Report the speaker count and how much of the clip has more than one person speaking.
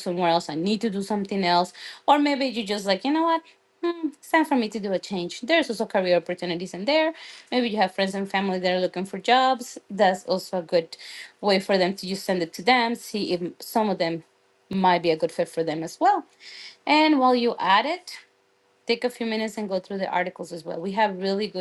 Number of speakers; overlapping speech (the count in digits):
1, no overlap